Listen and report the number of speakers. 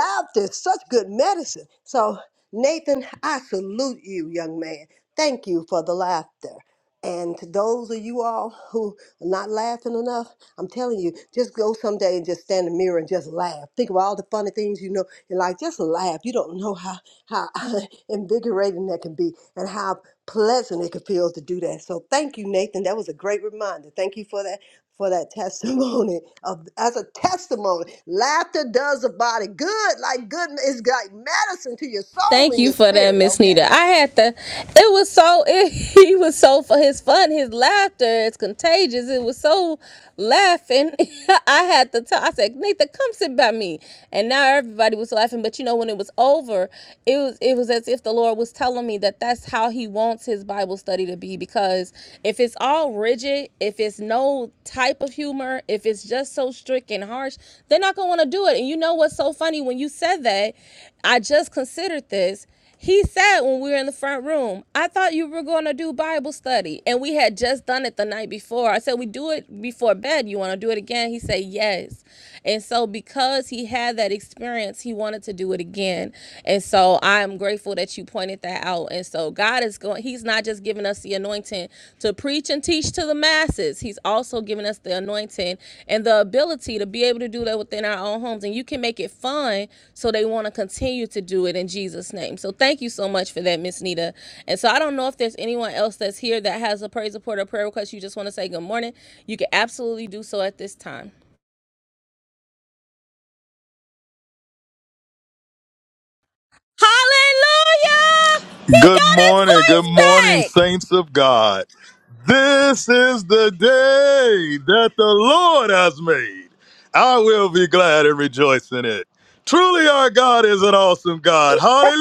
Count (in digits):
3